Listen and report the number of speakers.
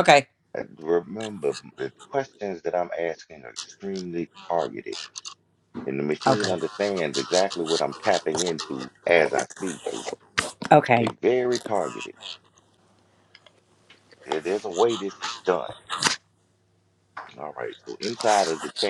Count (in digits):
2